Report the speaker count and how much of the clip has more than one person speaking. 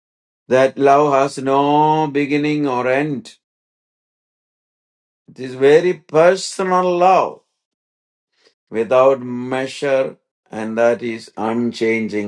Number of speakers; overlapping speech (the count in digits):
1, no overlap